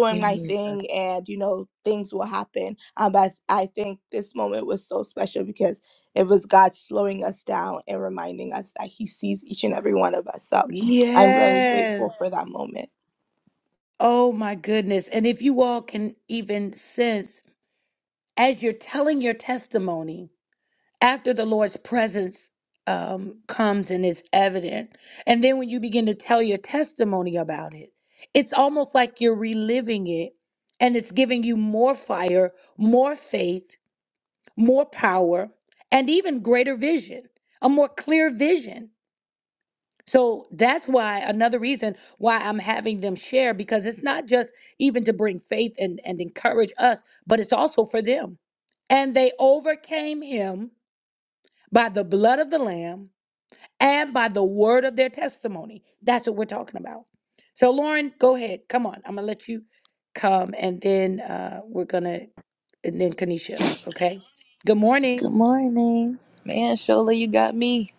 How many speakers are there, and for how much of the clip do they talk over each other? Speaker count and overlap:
3, about 2%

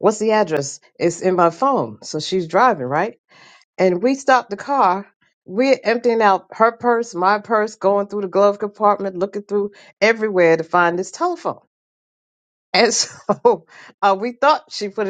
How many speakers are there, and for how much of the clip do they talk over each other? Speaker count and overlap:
1, no overlap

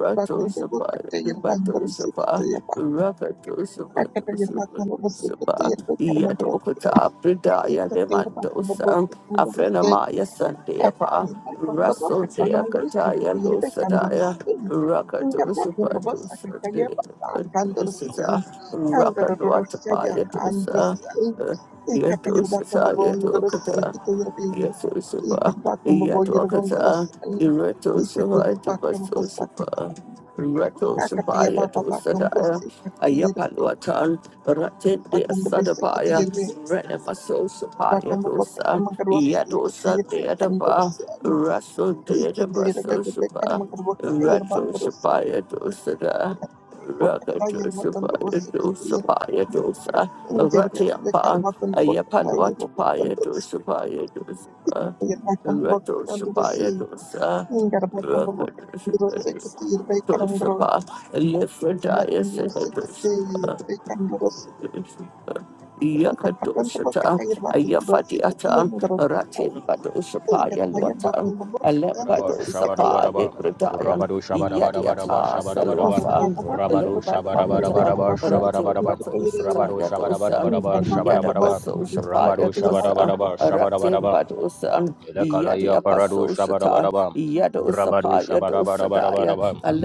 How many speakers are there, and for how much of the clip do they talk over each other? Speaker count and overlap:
3, about 54%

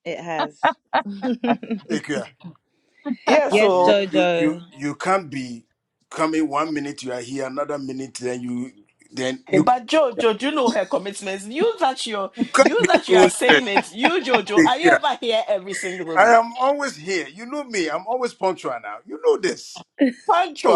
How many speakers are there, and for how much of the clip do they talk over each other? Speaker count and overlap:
3, about 15%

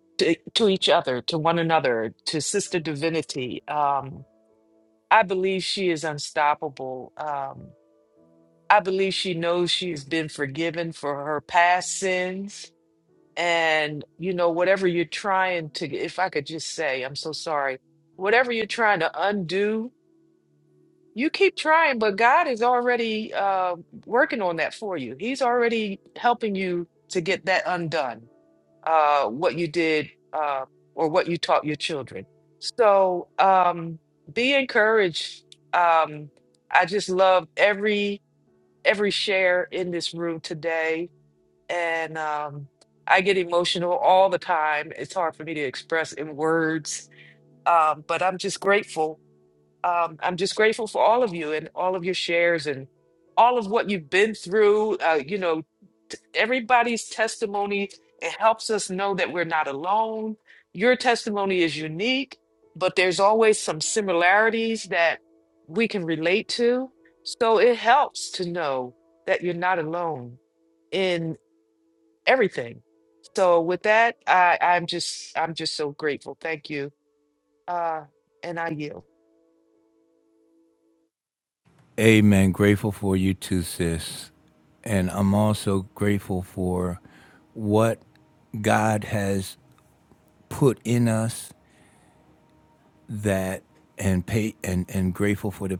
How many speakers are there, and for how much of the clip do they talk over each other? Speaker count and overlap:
2, no overlap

